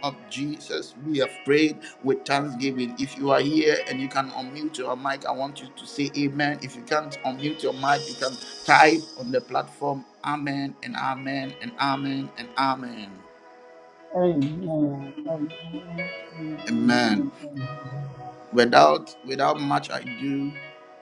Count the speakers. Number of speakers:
two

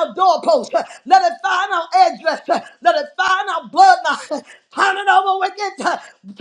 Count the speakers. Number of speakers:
one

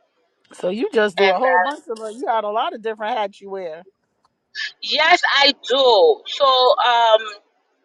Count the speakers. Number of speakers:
two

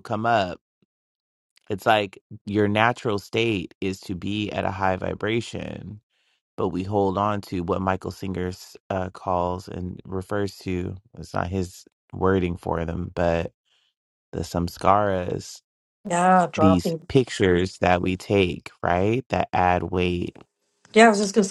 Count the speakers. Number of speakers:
two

